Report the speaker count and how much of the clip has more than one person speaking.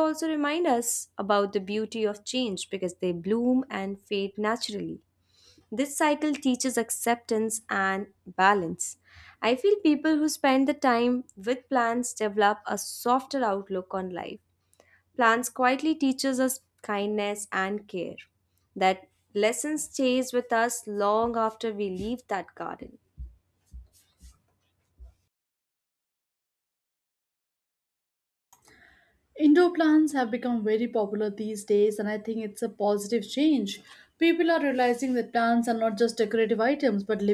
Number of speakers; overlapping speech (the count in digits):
2, no overlap